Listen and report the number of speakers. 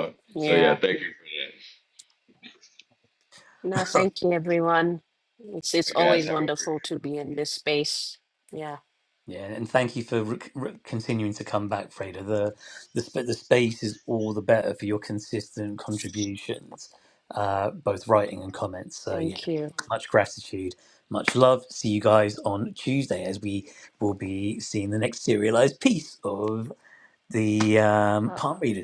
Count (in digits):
3